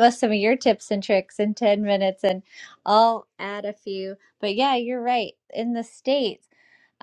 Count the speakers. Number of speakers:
1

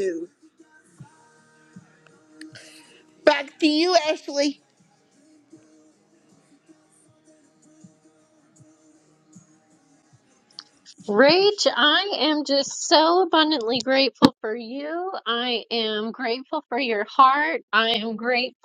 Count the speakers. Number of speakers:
2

